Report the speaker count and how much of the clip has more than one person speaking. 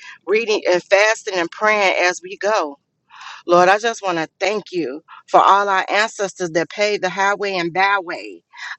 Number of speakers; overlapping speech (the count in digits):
1, no overlap